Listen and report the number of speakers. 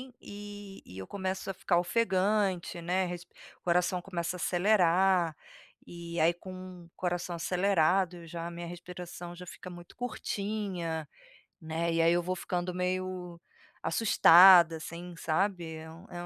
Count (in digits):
1